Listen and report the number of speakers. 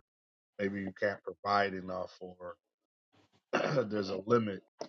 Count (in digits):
1